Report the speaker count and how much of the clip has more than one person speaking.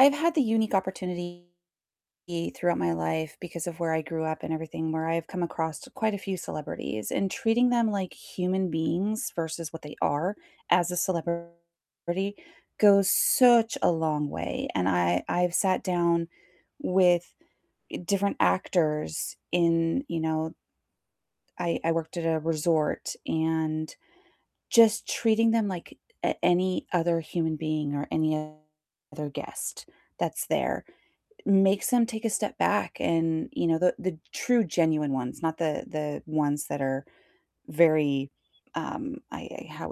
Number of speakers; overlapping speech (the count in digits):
1, no overlap